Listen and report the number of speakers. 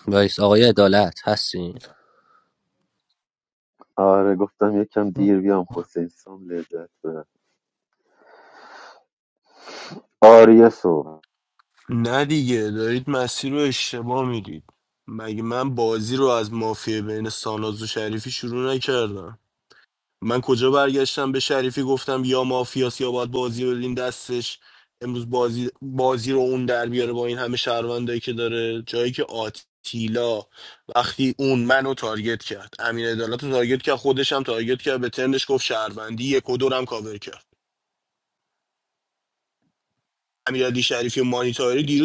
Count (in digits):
3